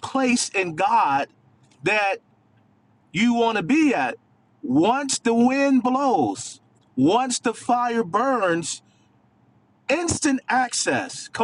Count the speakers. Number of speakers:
one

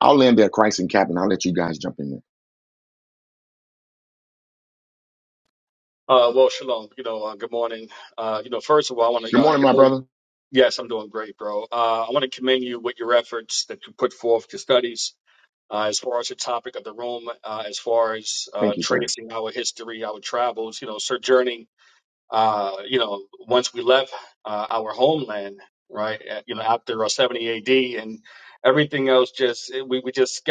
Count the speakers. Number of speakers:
two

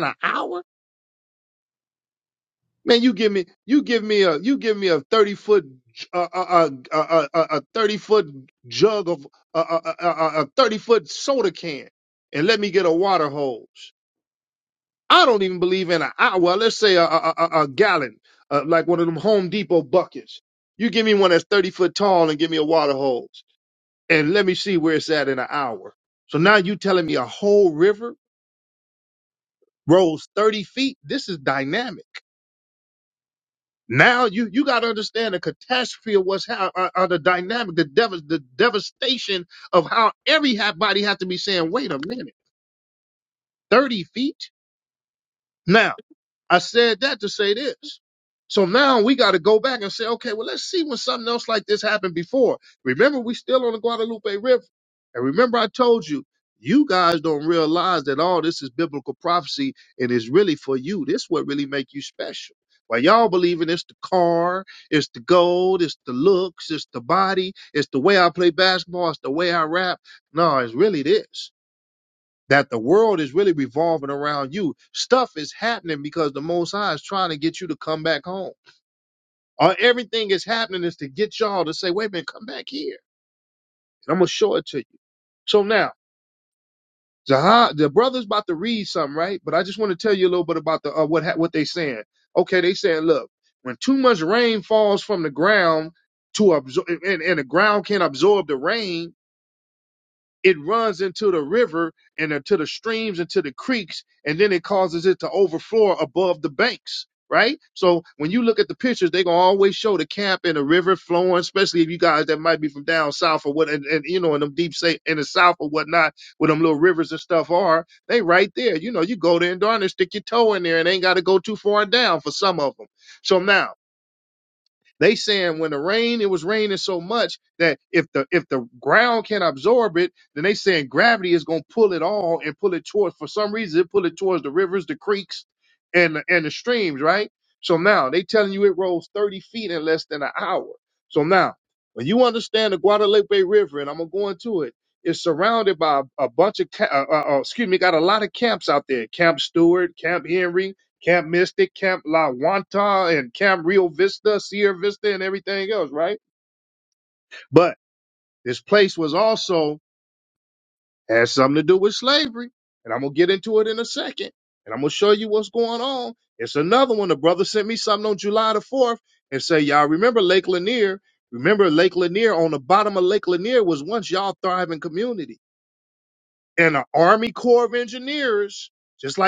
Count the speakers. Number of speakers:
one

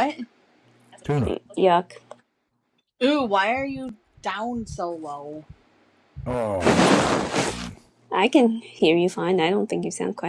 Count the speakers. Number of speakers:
three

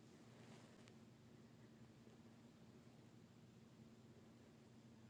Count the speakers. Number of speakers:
zero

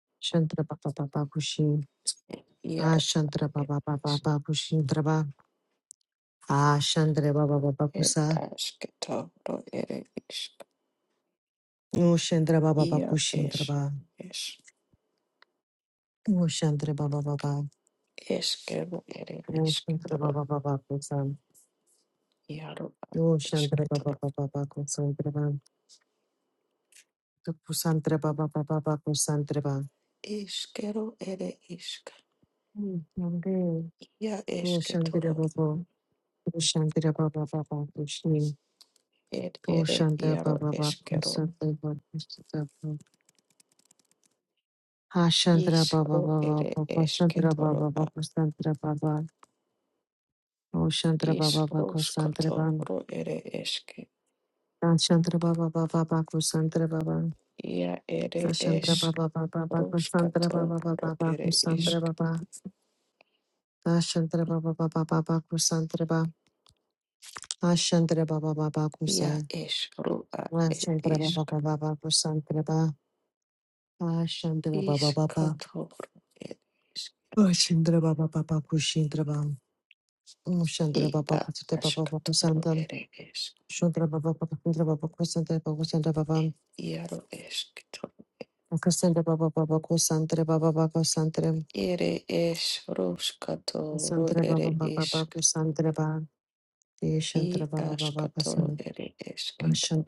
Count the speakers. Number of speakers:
two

